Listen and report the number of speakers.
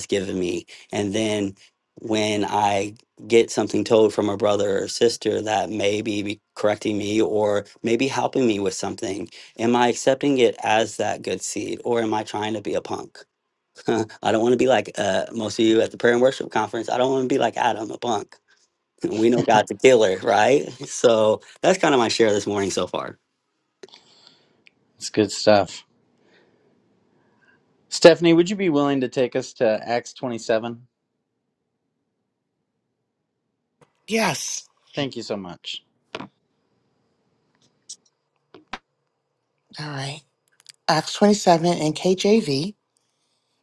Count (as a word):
three